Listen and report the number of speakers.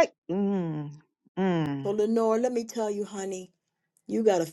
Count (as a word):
two